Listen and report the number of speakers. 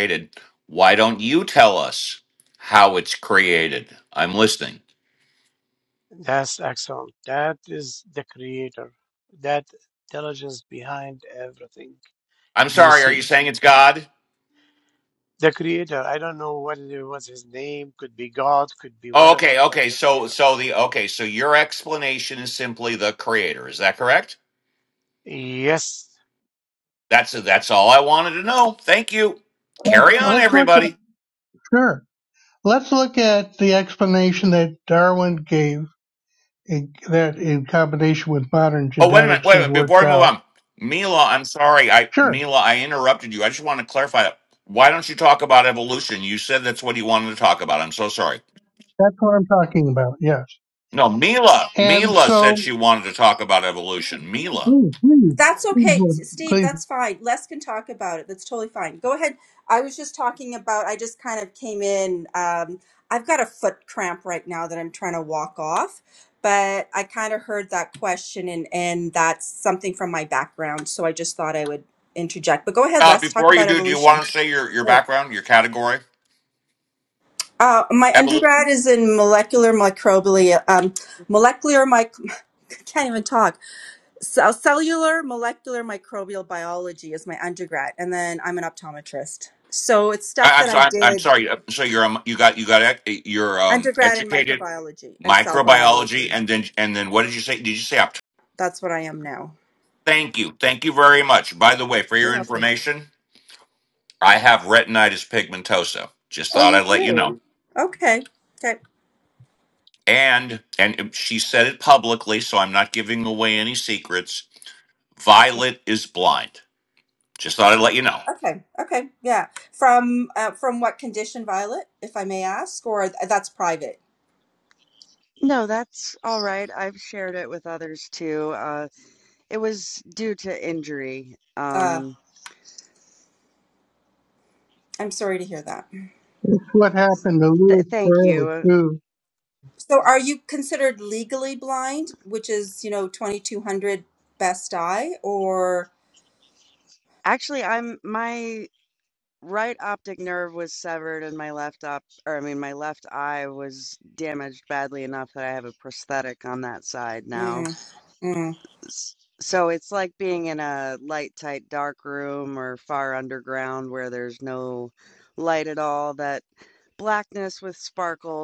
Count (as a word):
five